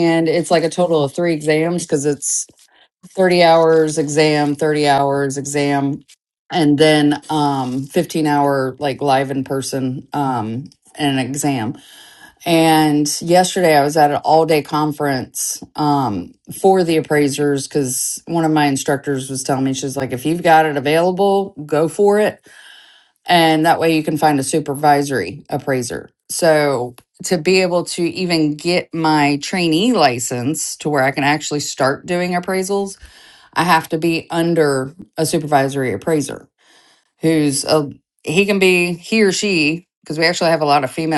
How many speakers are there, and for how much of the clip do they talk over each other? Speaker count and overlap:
1, no overlap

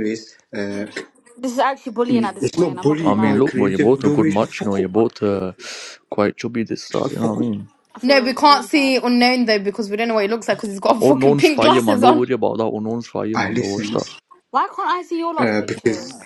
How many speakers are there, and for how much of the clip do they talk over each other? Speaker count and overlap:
4, about 45%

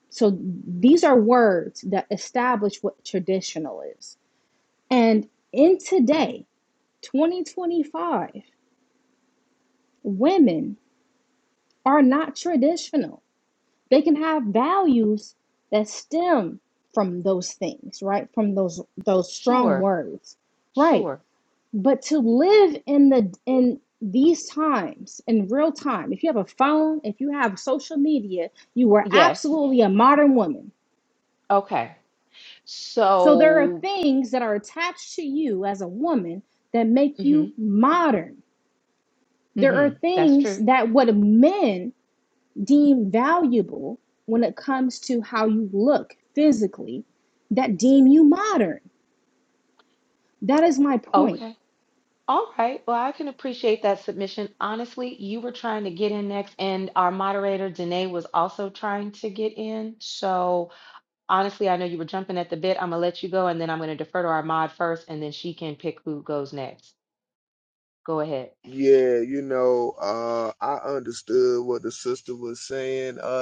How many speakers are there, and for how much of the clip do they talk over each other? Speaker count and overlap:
3, about 4%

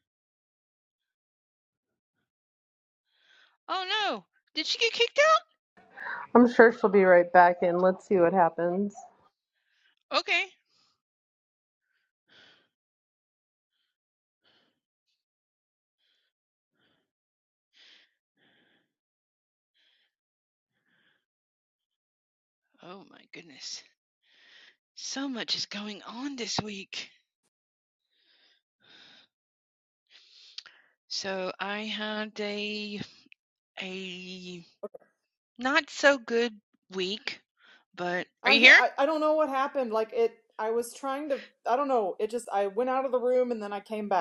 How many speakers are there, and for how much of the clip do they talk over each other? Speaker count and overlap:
3, about 1%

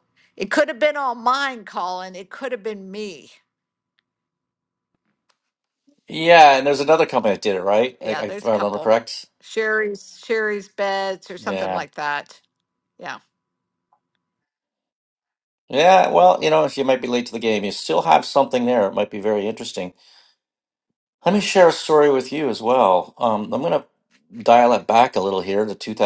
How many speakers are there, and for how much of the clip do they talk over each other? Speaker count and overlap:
2, about 5%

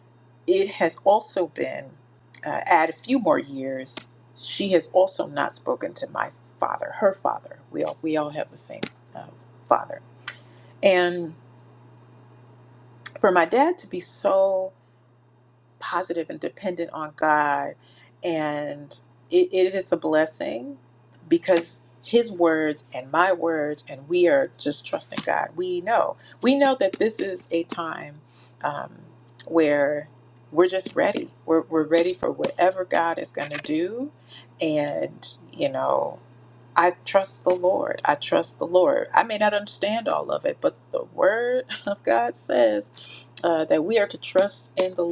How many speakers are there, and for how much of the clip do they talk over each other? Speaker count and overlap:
1, no overlap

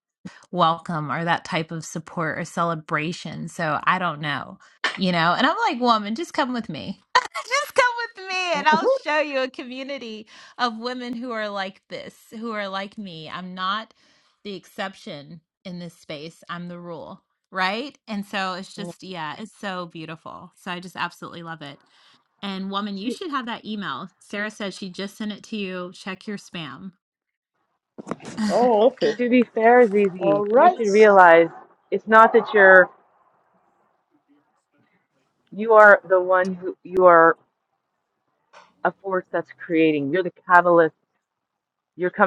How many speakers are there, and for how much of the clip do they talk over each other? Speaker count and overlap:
3, about 2%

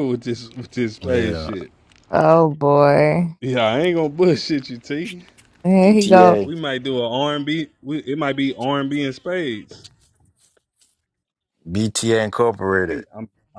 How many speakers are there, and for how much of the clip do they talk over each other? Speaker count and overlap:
3, about 9%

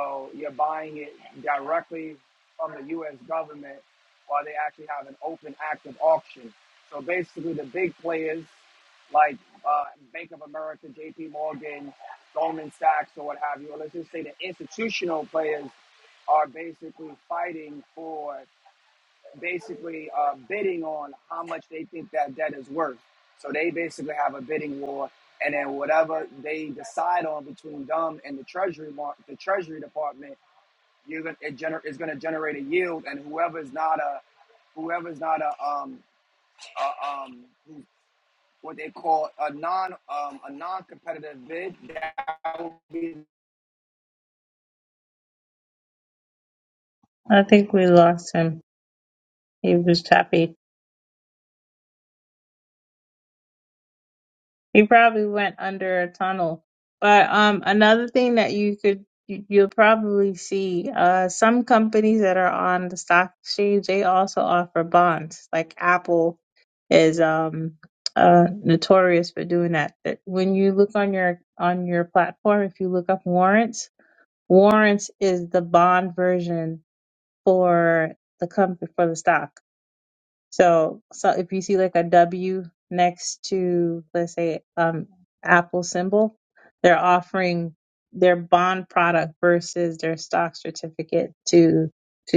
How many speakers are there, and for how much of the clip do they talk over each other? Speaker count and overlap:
2, no overlap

